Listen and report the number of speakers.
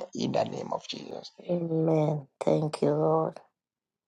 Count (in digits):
2